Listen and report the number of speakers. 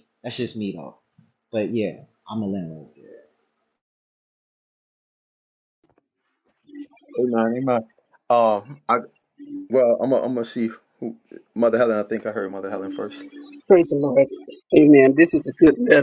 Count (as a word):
three